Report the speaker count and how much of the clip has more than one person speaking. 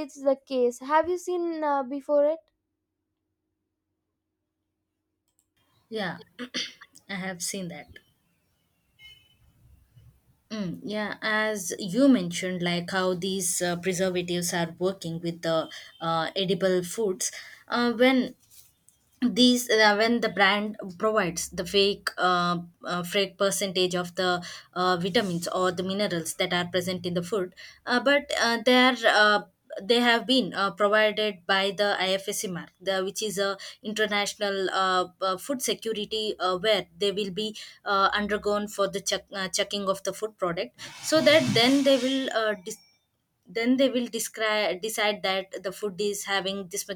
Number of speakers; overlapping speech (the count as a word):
two, no overlap